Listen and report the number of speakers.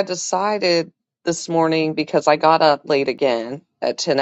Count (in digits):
1